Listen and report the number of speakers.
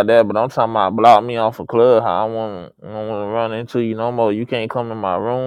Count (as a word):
one